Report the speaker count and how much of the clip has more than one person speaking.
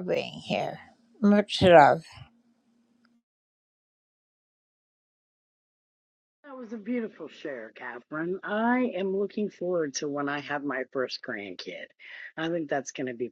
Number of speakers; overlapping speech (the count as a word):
two, no overlap